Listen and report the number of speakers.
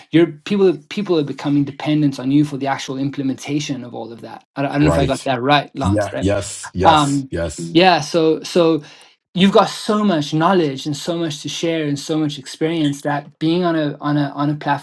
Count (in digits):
2